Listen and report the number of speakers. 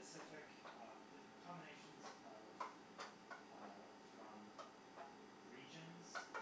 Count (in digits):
1